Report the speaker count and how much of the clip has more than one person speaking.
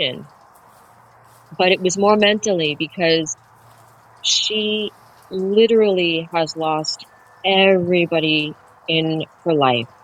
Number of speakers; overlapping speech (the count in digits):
1, no overlap